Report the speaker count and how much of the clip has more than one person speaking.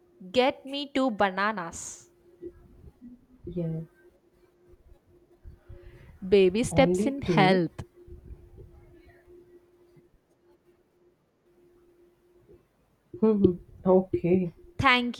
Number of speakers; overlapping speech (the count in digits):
2, about 6%